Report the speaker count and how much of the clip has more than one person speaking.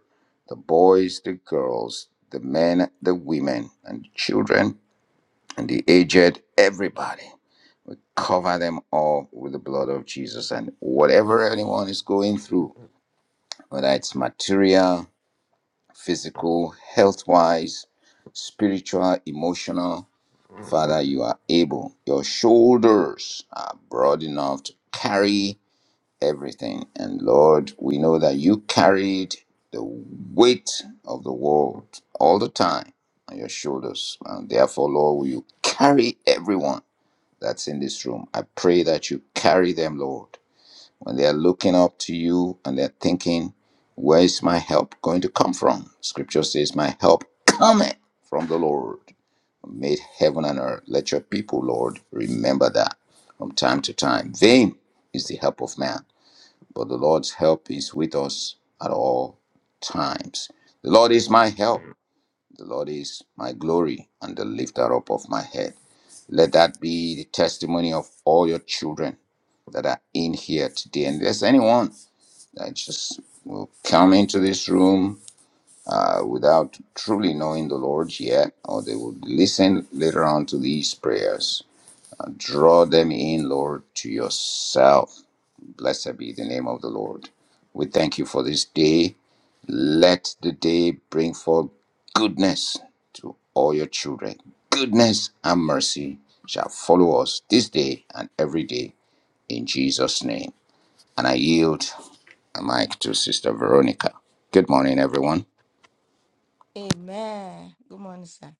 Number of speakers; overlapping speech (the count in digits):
2, no overlap